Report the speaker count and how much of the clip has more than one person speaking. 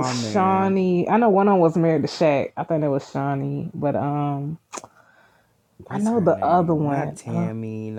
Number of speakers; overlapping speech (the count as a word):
two, about 30%